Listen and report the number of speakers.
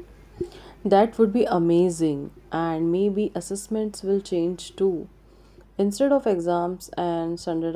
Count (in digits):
1